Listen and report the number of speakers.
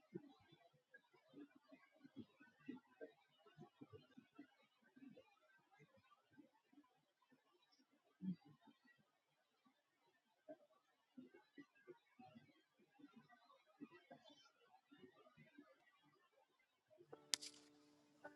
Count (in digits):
0